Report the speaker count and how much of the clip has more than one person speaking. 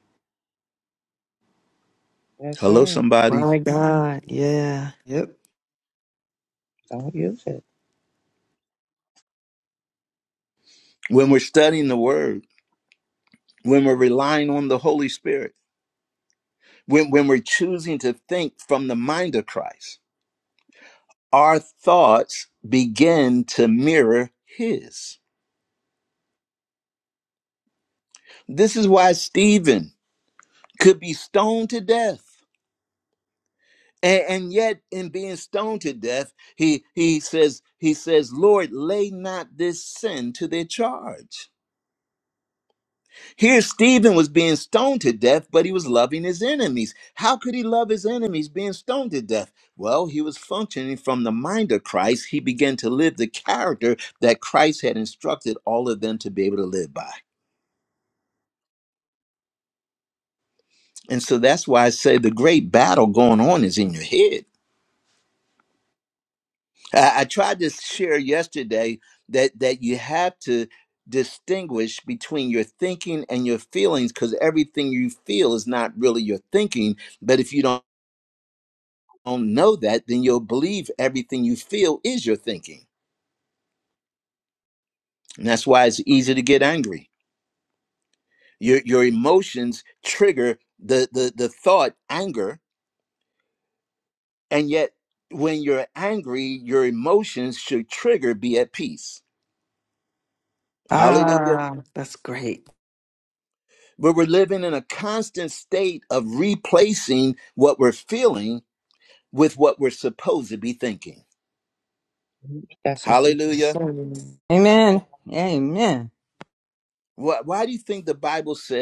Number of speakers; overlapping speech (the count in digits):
4, about 2%